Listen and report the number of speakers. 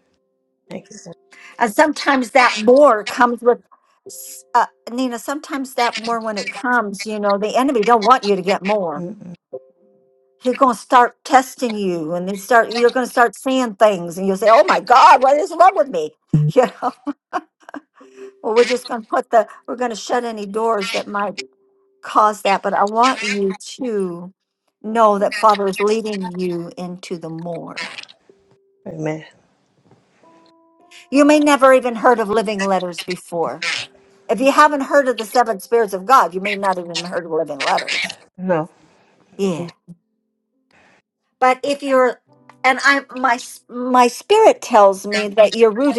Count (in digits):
2